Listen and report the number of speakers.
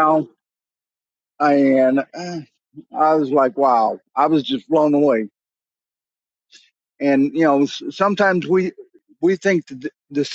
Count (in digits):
1